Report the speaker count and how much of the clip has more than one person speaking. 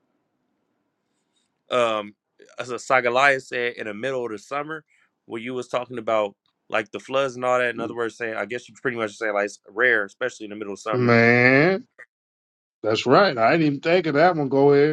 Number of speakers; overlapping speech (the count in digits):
2, about 1%